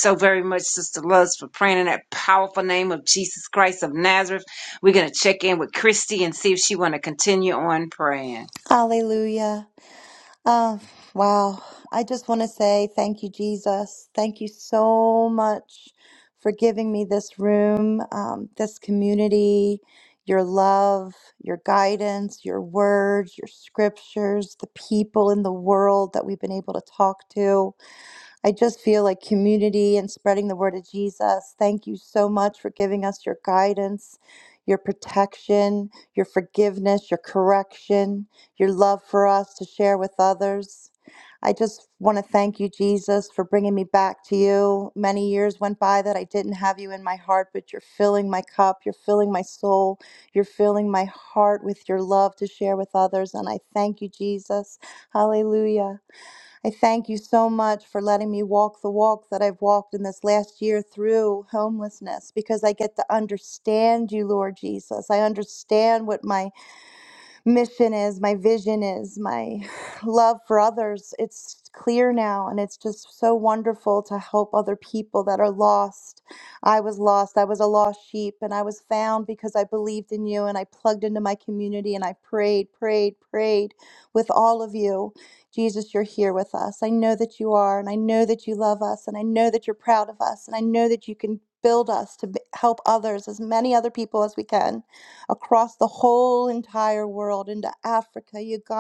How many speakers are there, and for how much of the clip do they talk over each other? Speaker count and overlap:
two, no overlap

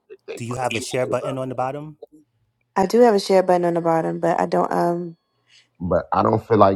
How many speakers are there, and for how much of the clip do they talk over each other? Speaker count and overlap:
three, about 3%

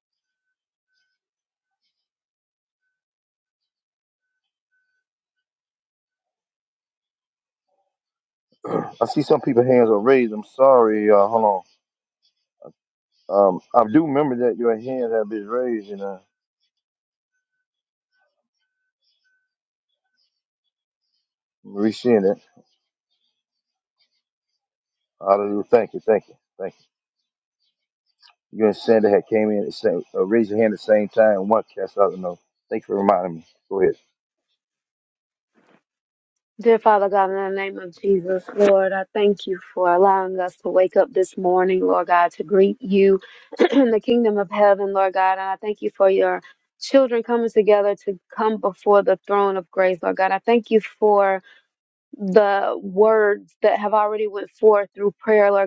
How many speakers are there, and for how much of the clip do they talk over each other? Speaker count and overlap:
two, no overlap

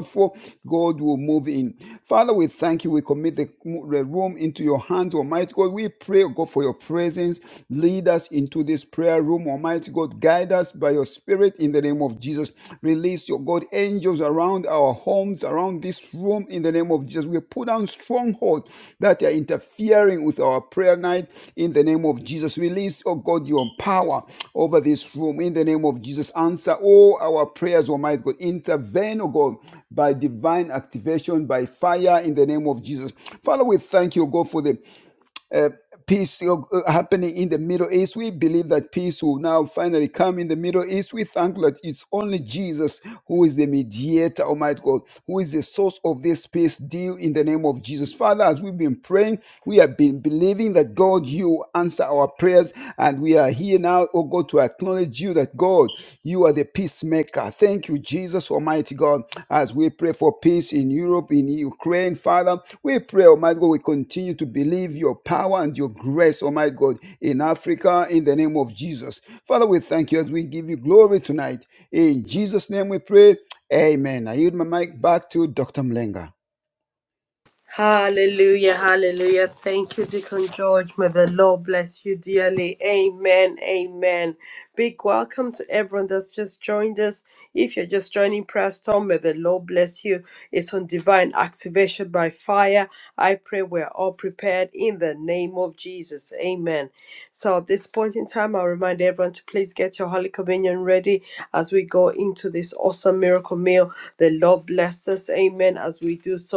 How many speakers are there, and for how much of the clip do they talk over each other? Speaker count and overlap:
two, no overlap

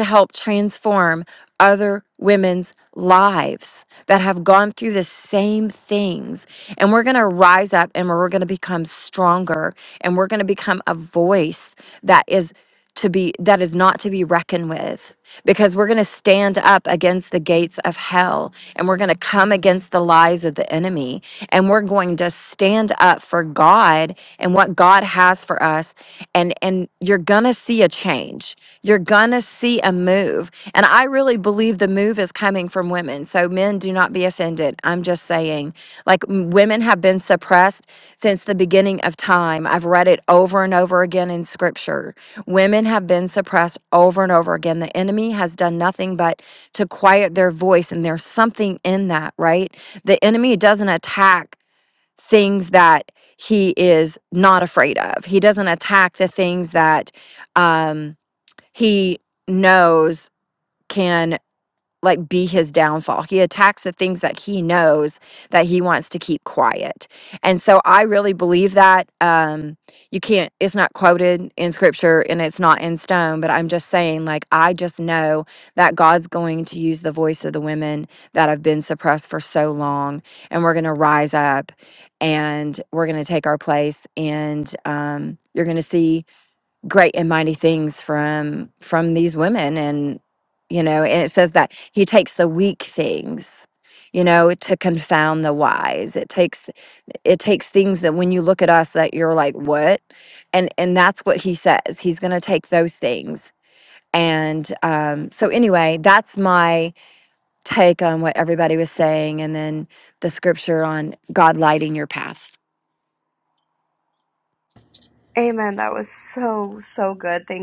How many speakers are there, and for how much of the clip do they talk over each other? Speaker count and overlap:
two, no overlap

